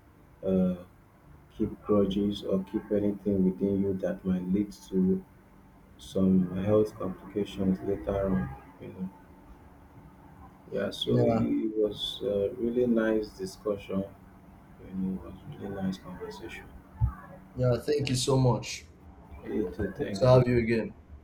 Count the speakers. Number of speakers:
2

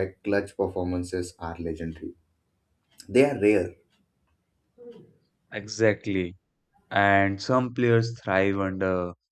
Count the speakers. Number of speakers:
2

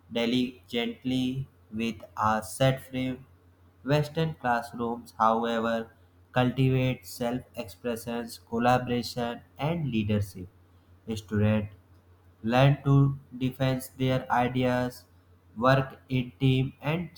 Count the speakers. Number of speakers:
1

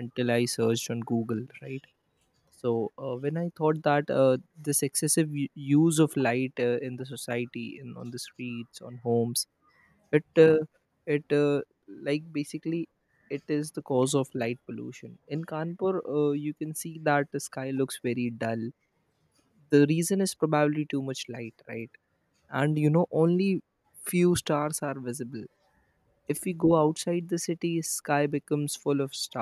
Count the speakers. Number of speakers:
1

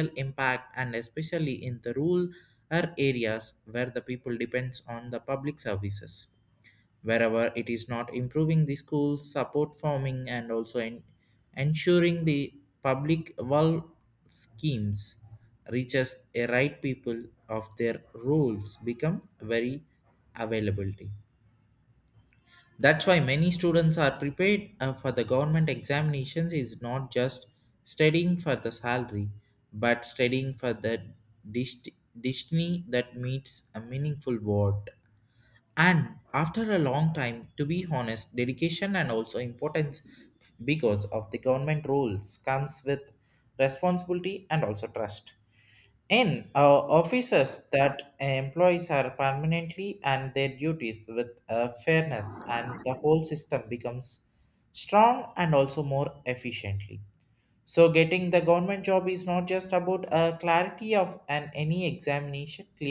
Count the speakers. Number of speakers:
1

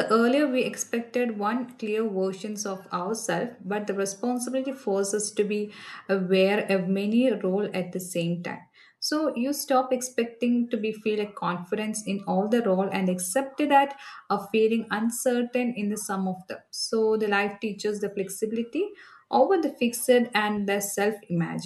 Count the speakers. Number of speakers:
1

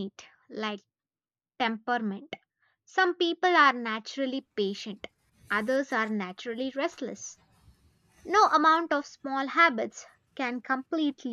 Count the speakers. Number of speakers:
1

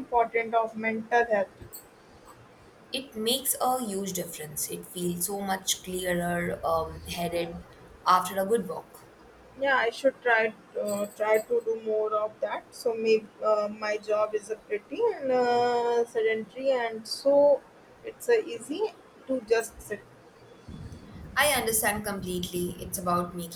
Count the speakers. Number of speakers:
2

